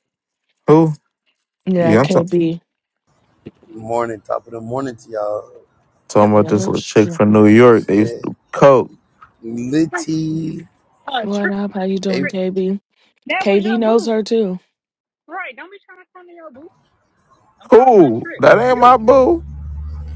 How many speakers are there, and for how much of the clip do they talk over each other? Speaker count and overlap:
4, about 24%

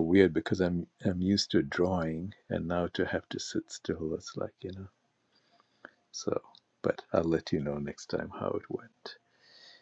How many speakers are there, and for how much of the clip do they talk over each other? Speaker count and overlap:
1, no overlap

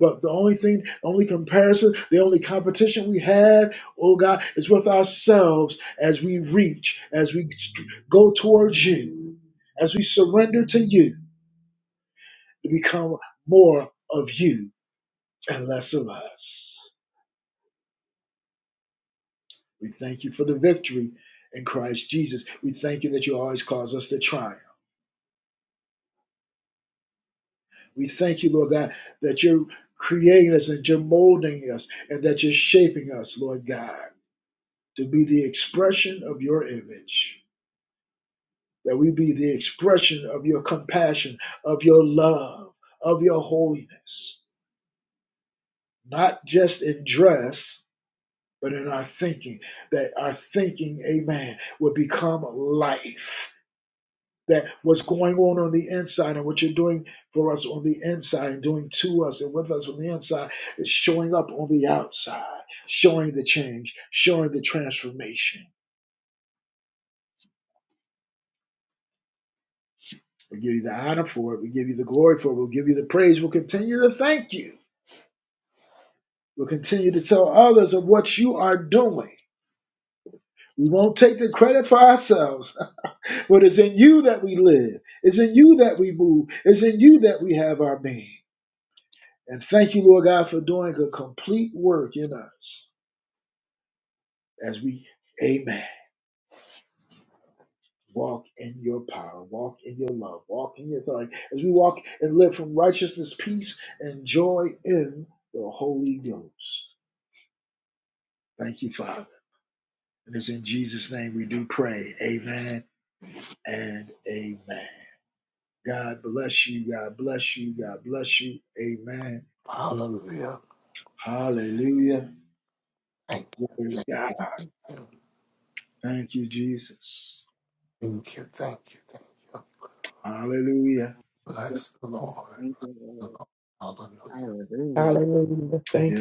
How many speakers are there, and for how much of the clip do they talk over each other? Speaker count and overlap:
4, about 1%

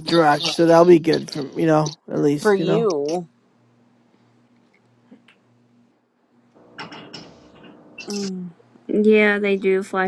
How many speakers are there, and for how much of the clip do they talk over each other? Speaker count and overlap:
3, about 4%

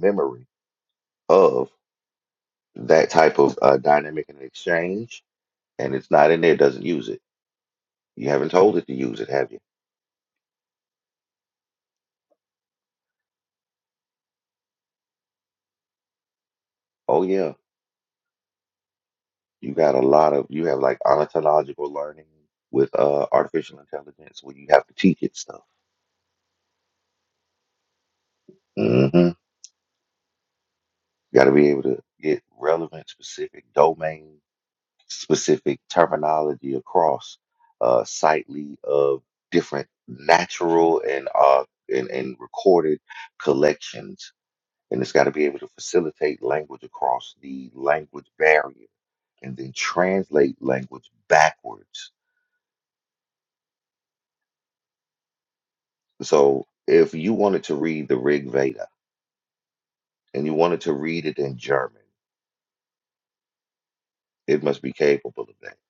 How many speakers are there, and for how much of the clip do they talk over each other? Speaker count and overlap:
1, no overlap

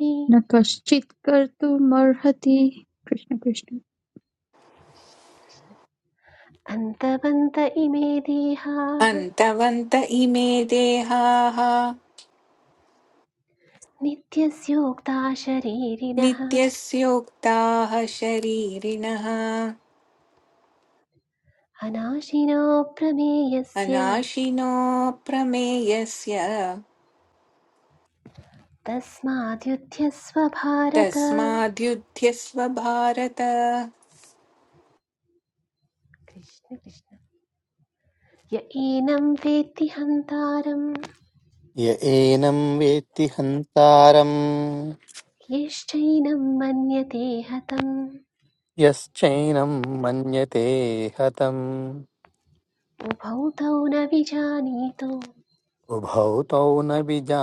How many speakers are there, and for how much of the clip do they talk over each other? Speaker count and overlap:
4, about 2%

